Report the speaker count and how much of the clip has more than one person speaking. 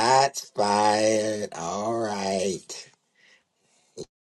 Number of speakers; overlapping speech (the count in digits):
1, no overlap